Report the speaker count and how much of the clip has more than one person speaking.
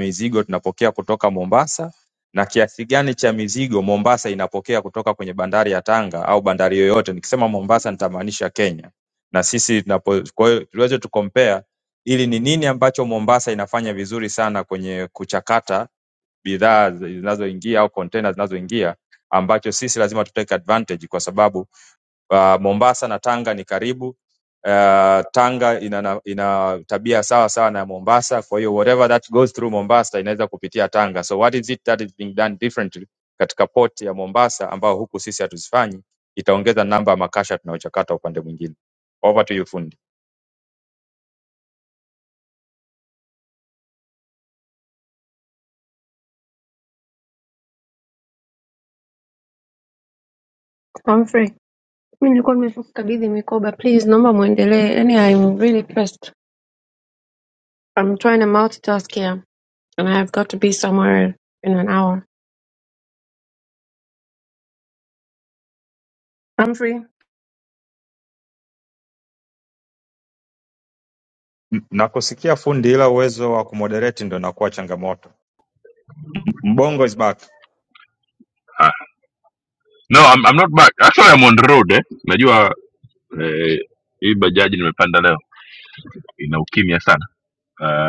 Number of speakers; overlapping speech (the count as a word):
three, no overlap